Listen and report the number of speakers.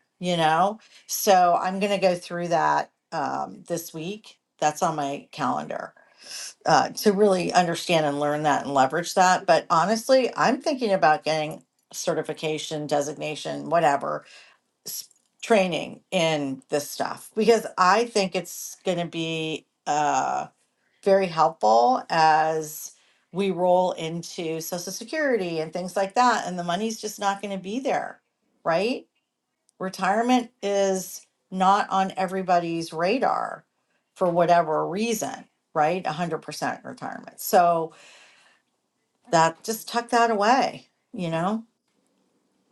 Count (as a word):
one